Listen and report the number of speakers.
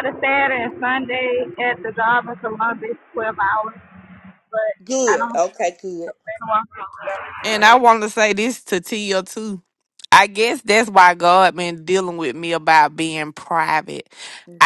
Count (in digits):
3